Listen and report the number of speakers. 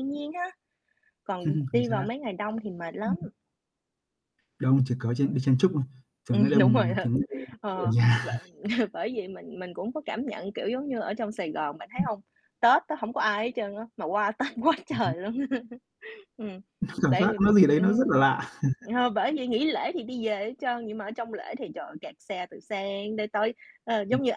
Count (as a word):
two